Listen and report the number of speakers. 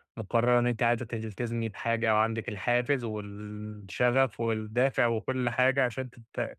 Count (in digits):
1